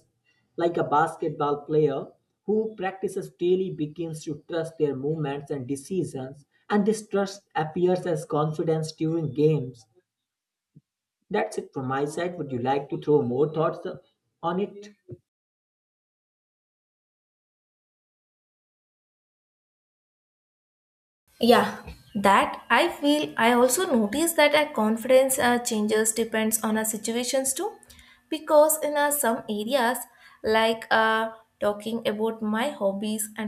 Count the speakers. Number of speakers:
two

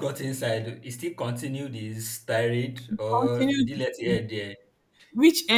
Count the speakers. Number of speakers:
two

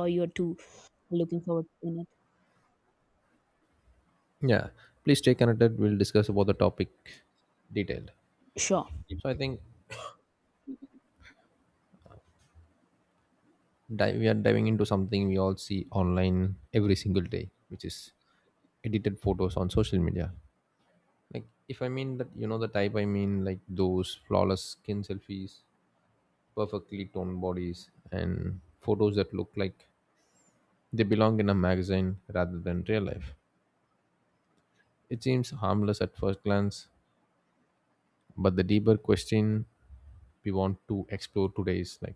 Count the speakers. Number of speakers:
two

